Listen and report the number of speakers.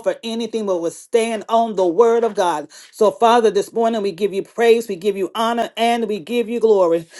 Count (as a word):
one